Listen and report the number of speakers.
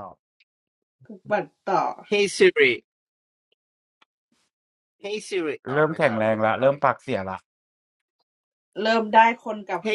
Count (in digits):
3